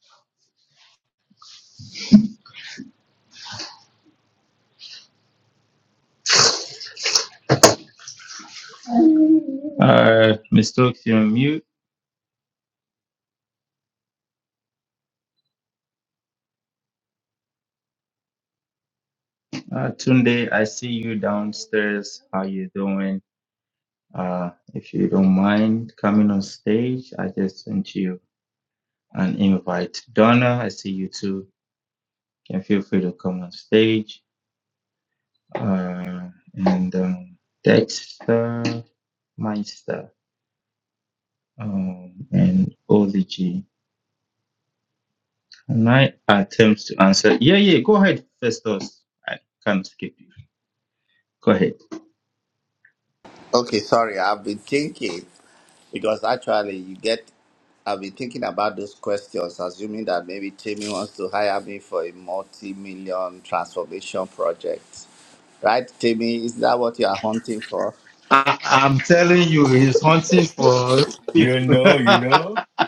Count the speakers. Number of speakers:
3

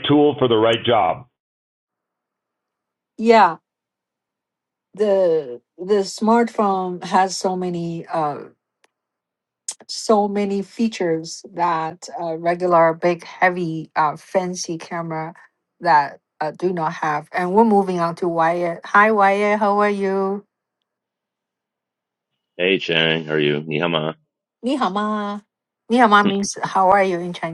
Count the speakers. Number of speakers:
3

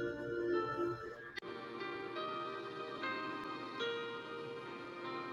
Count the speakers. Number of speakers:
0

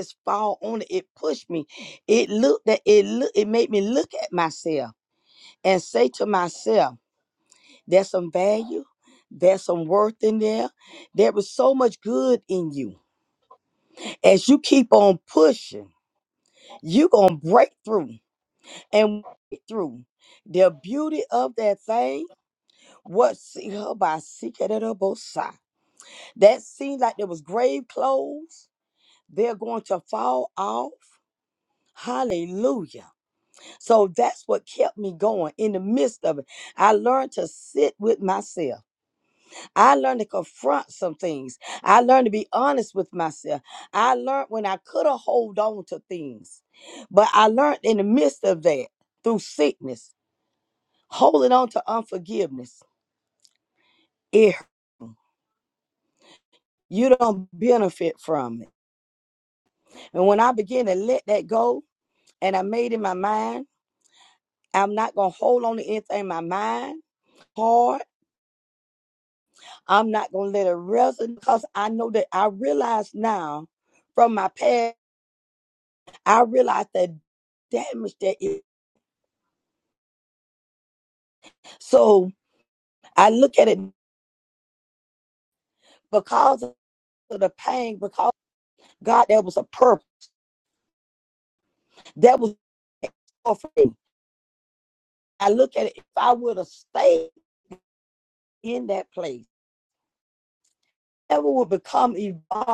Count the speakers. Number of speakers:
1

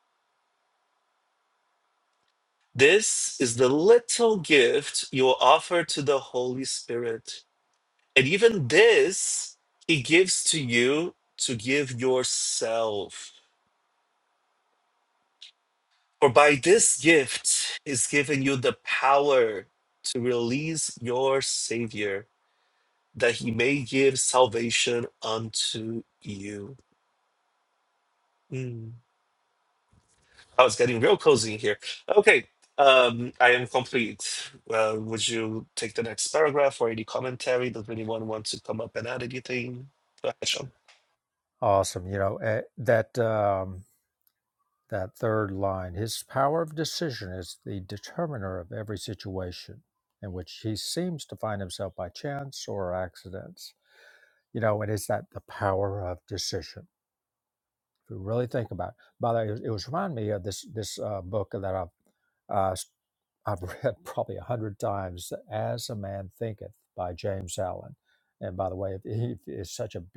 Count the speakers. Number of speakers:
2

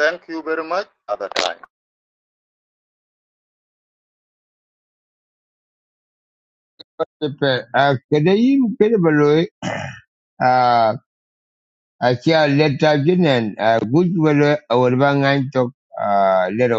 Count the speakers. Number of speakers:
2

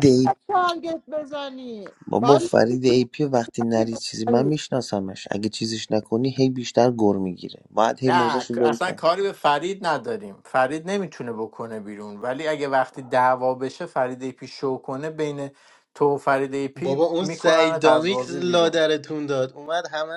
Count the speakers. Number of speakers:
4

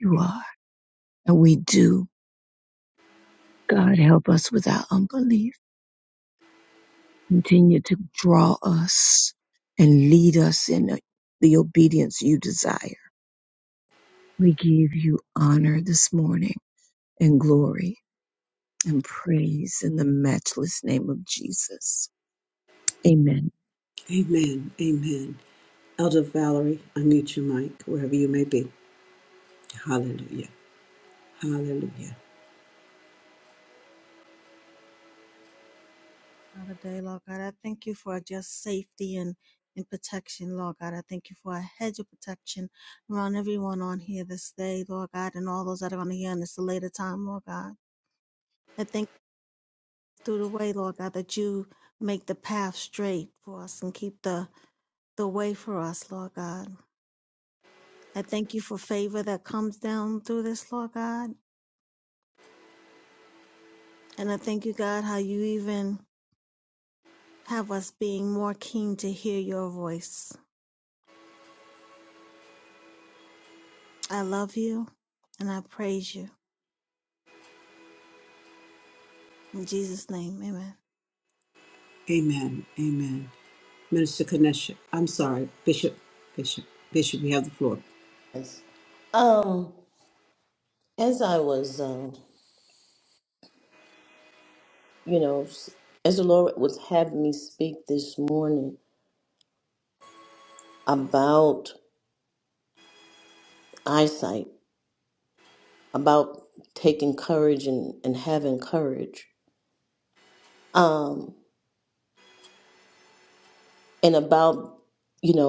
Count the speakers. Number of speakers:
4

